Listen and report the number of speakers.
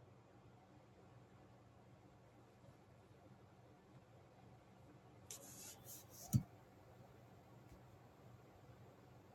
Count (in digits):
0